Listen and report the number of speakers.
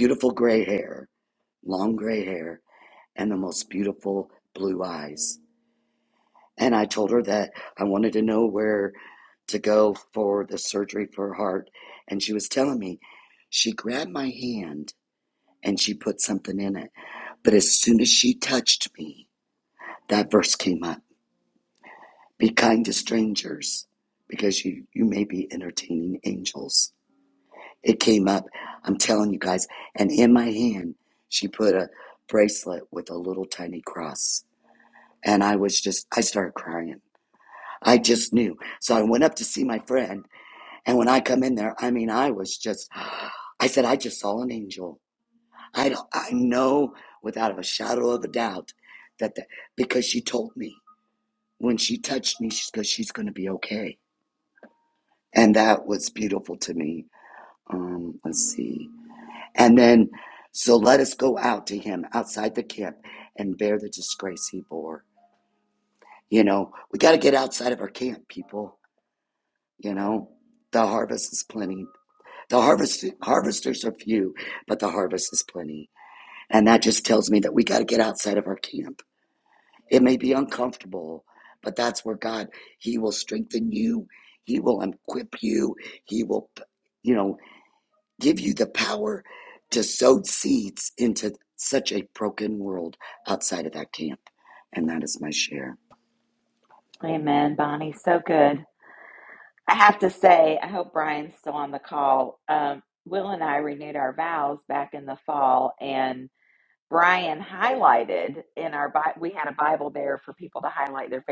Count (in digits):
2